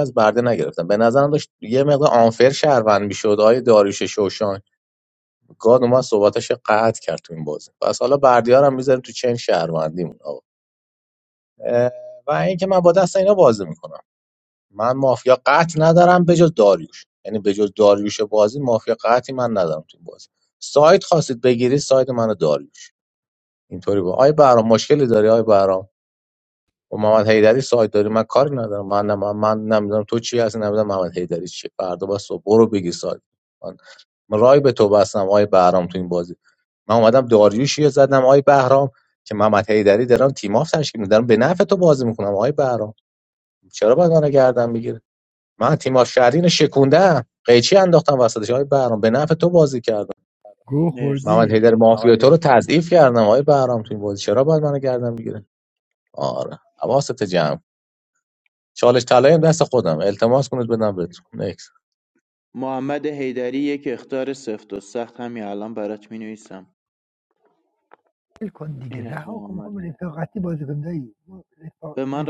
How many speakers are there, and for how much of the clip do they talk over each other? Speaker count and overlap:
3, about 3%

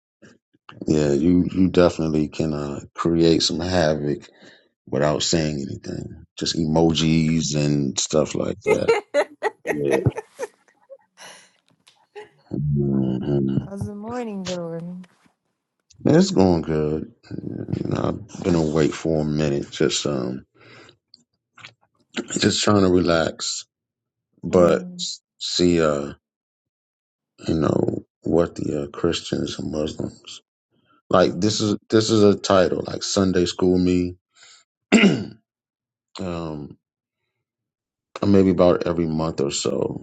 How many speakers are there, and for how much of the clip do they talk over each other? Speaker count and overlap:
2, about 1%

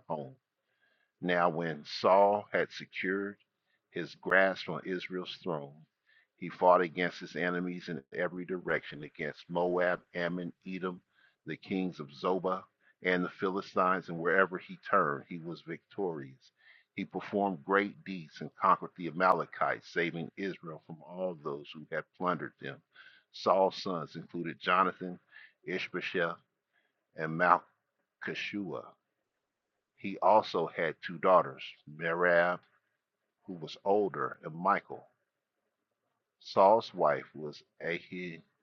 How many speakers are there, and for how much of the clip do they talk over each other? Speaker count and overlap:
1, no overlap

